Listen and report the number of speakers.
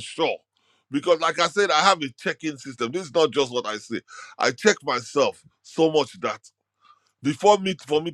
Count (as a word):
one